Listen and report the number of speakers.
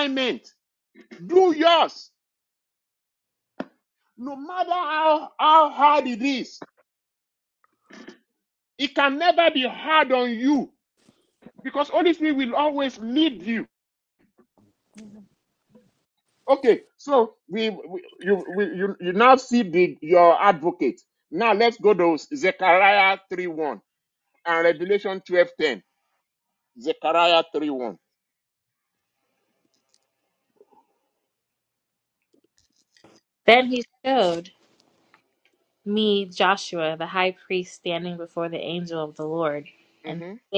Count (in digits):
2